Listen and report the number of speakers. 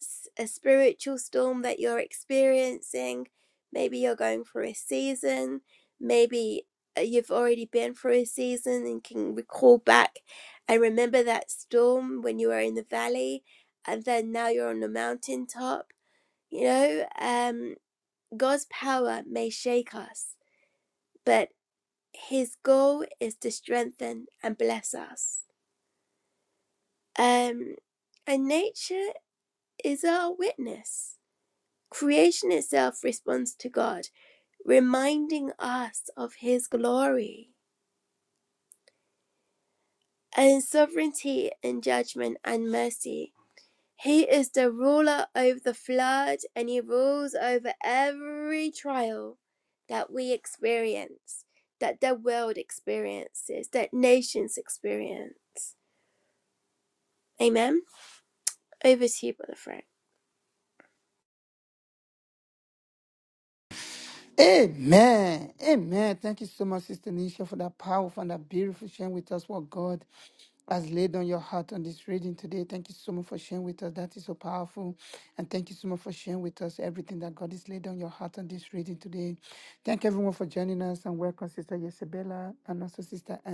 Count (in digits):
2